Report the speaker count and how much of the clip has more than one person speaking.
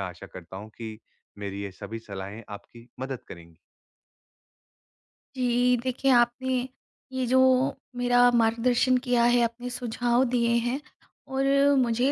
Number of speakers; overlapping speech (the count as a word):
two, no overlap